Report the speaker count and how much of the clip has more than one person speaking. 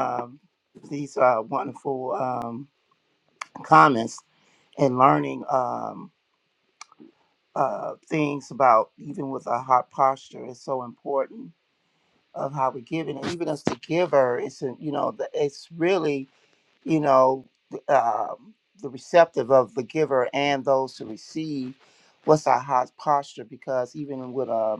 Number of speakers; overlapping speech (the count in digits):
1, no overlap